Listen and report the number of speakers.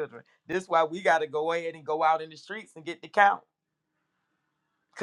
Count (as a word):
one